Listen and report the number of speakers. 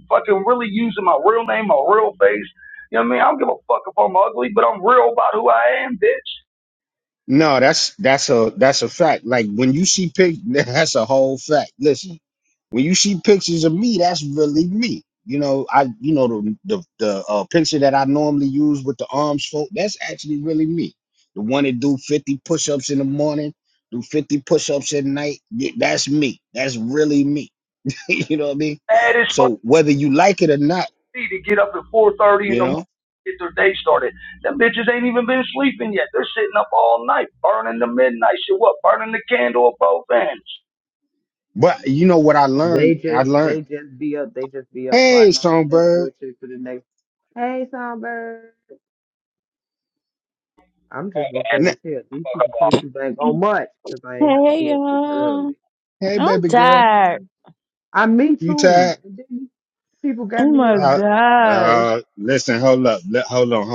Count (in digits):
4